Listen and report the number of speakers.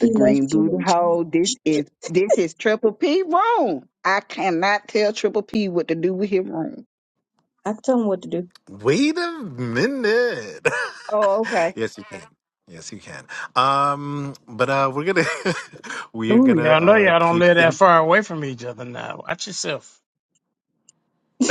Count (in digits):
4